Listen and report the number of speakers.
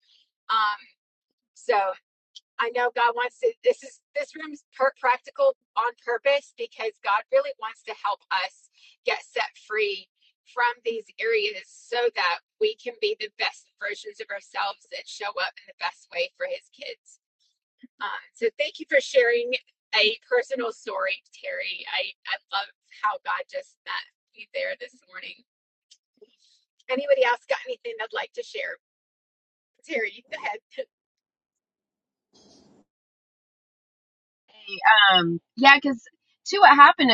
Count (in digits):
2